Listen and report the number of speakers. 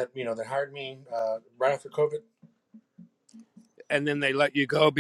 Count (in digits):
2